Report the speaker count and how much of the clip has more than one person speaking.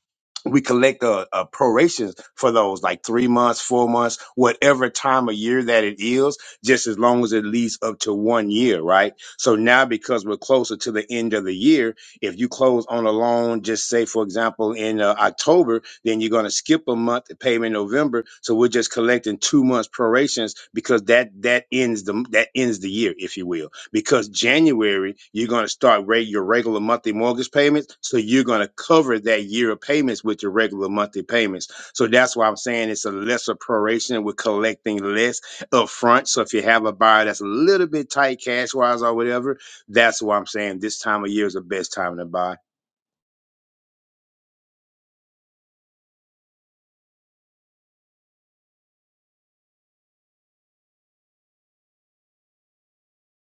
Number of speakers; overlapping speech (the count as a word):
one, no overlap